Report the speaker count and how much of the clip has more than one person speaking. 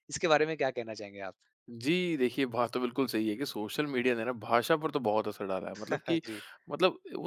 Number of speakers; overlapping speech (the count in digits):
2, no overlap